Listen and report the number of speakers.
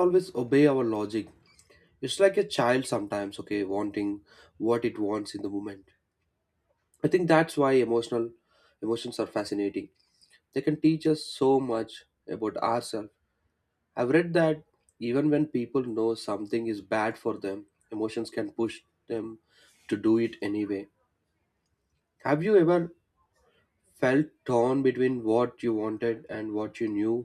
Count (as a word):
one